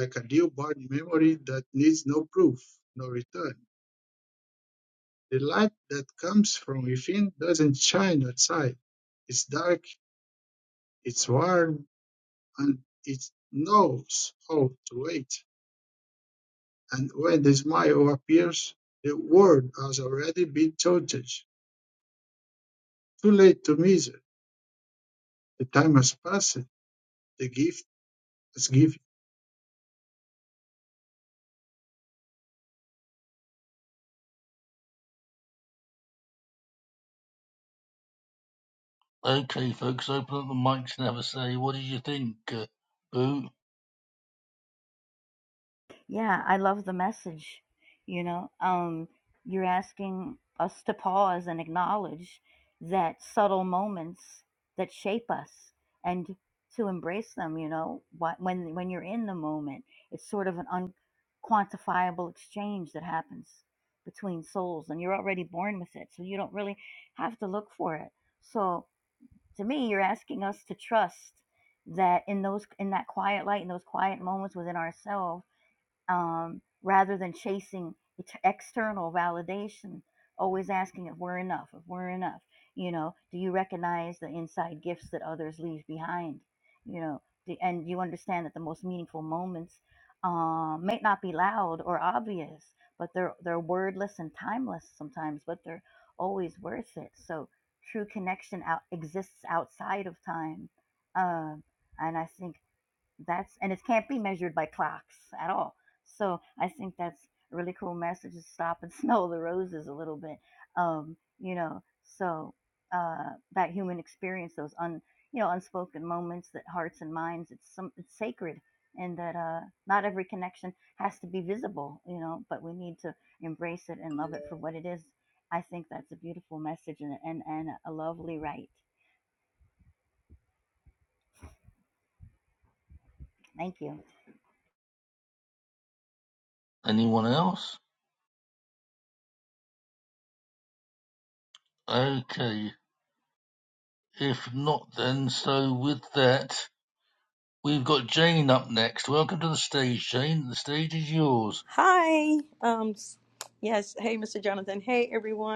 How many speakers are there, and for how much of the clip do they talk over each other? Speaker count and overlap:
four, no overlap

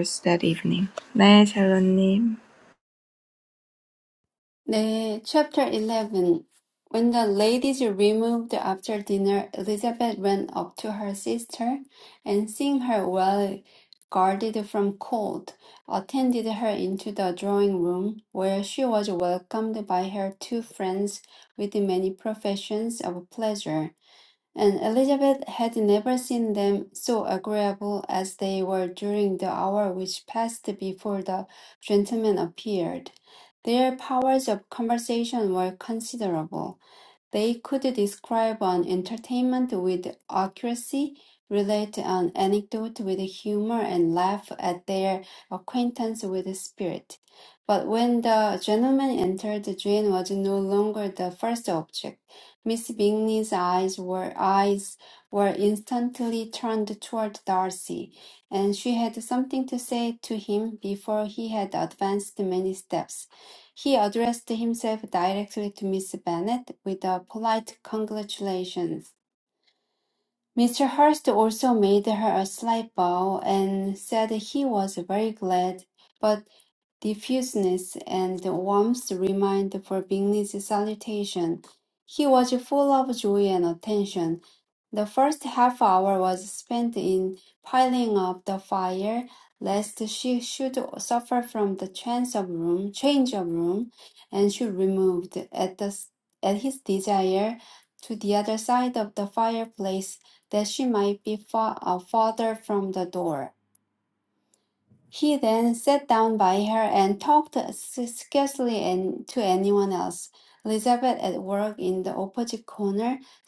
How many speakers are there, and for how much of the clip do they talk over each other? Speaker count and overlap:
two, no overlap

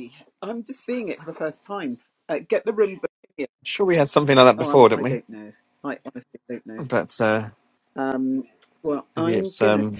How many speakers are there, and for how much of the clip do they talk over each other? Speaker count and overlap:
two, about 14%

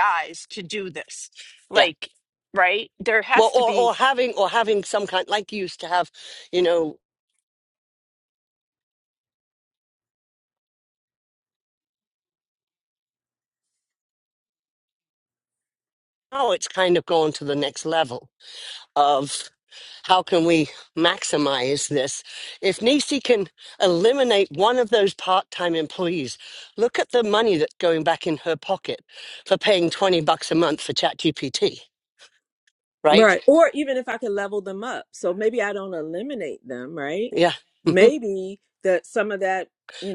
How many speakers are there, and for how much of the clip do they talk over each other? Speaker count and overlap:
three, about 3%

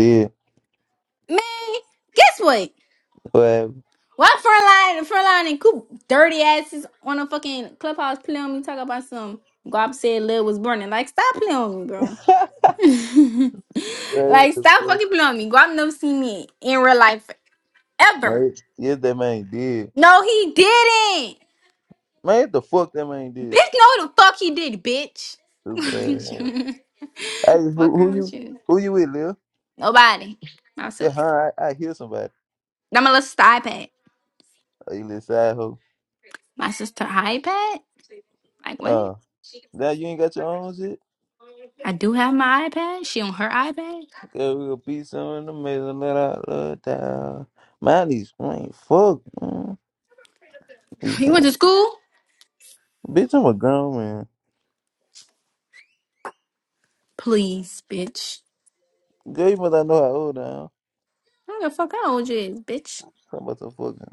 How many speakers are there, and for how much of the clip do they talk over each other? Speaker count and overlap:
two, about 4%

